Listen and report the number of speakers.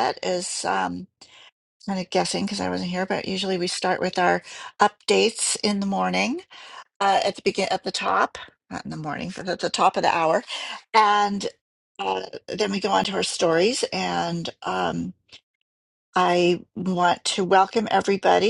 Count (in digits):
1